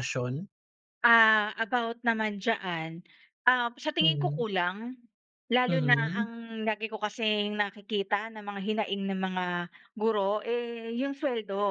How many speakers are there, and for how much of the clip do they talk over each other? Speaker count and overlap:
2, about 8%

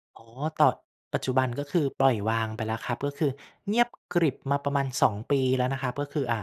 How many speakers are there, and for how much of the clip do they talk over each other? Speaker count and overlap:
1, no overlap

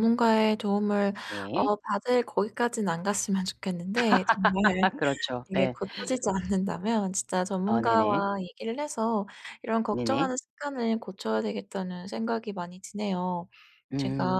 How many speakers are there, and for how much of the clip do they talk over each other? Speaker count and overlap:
2, about 12%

